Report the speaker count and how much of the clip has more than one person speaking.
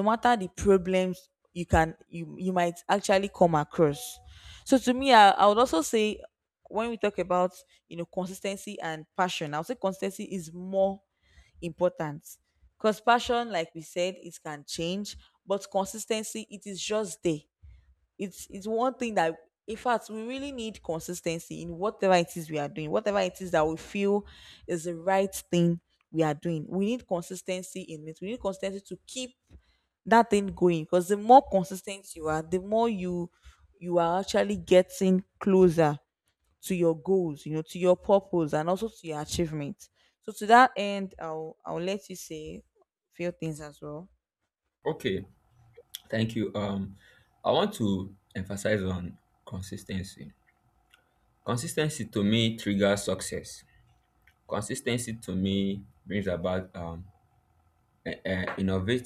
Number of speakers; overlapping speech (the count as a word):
two, no overlap